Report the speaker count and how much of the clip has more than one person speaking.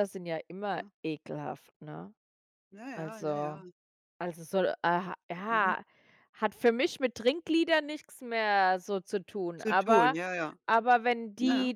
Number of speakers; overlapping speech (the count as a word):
two, about 14%